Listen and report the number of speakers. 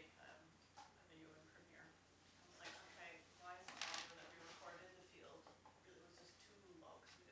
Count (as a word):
one